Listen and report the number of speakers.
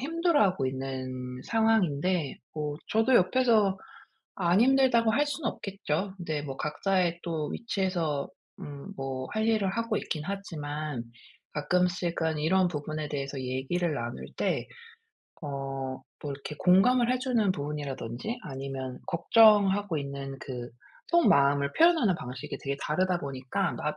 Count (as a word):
one